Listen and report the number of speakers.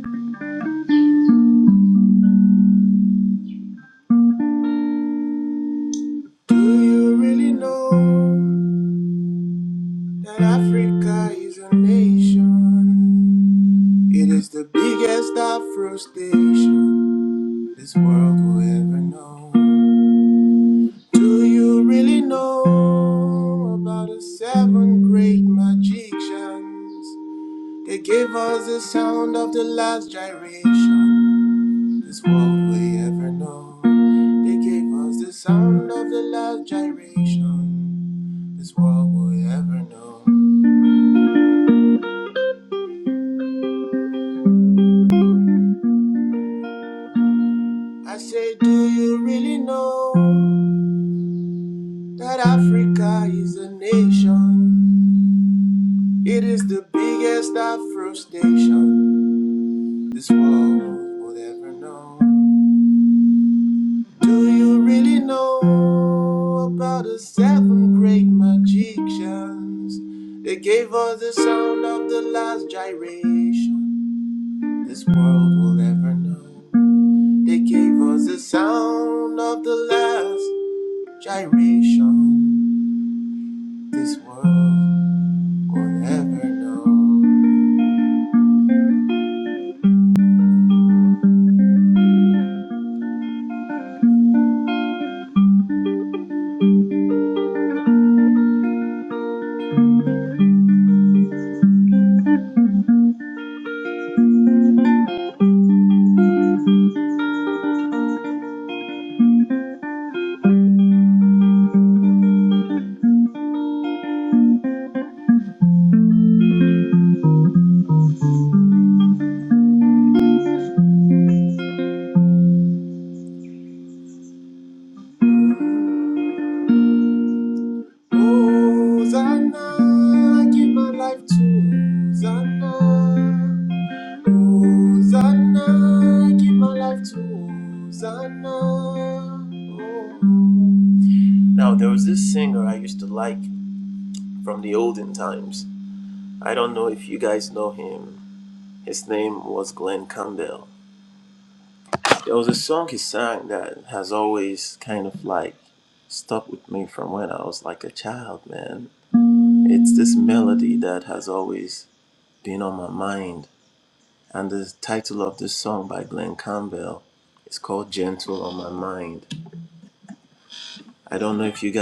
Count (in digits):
1